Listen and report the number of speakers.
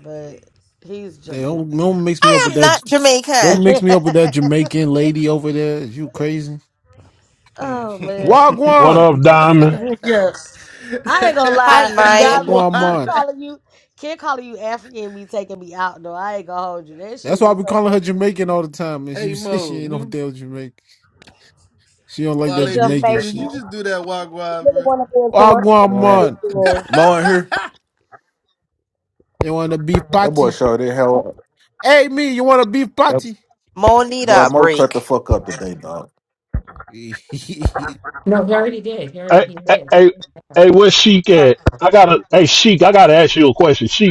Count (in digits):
7